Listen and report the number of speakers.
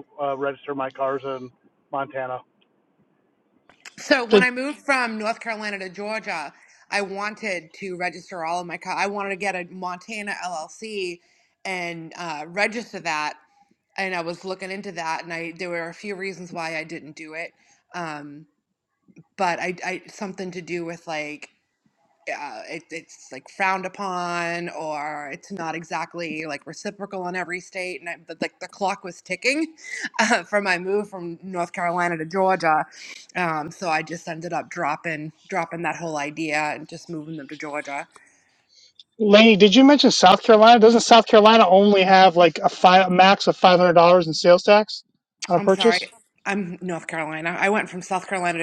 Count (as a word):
three